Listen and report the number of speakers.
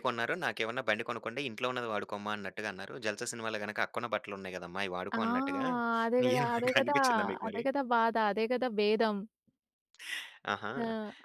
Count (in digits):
2